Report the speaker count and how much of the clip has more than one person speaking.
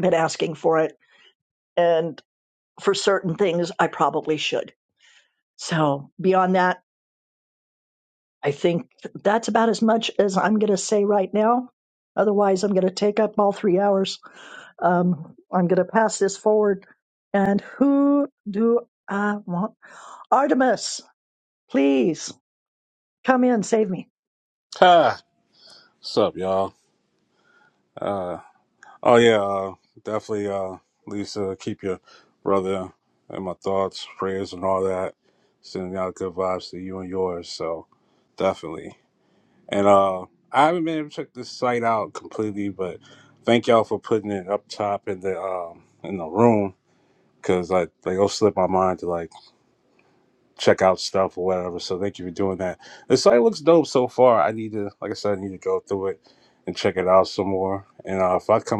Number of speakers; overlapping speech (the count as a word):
two, no overlap